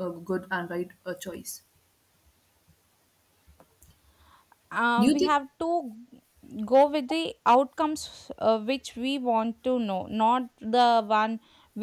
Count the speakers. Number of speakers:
2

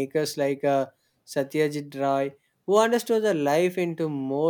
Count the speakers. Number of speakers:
1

